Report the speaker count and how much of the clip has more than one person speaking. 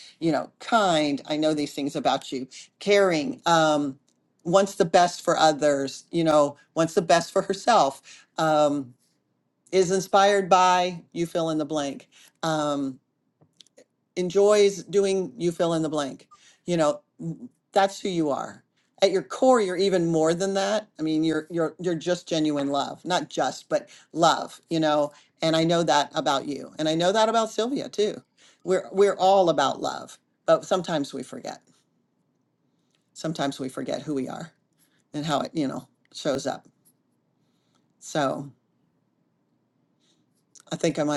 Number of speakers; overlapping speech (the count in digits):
1, no overlap